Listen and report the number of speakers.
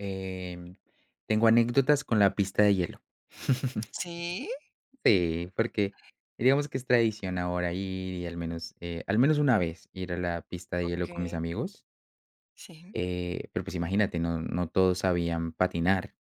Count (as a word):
two